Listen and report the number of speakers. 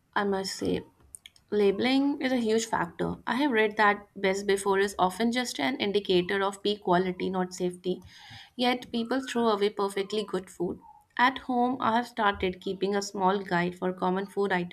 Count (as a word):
one